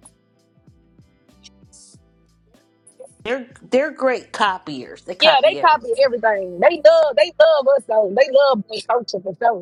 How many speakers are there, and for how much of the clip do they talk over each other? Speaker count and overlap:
2, about 9%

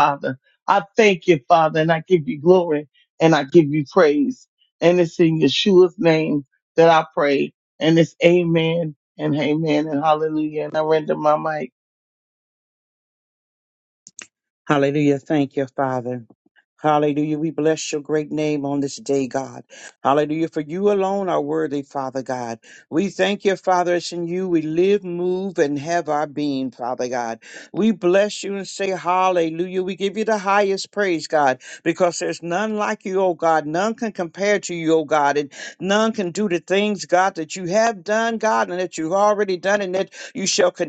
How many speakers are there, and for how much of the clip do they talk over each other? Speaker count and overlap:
2, no overlap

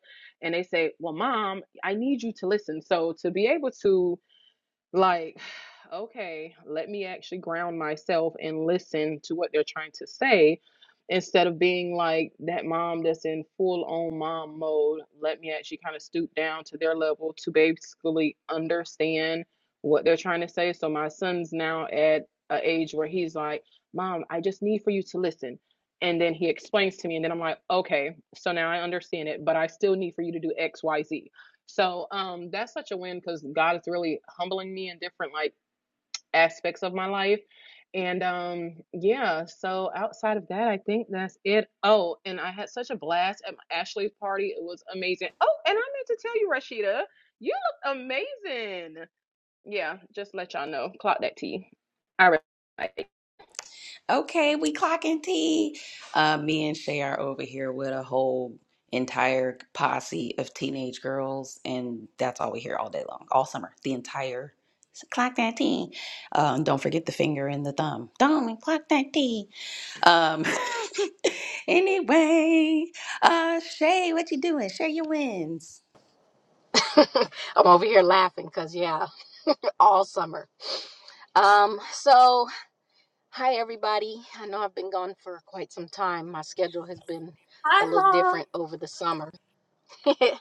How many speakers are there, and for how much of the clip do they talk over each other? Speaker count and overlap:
3, about 1%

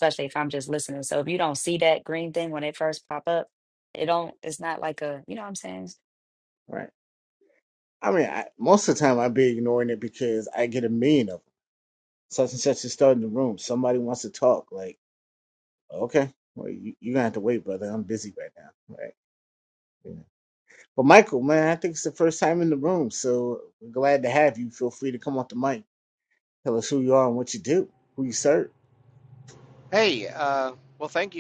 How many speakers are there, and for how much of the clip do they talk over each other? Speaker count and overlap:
3, no overlap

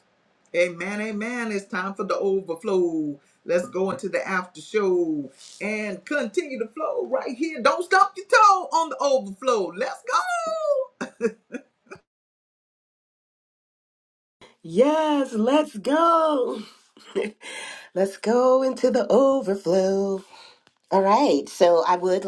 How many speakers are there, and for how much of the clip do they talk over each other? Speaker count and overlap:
2, no overlap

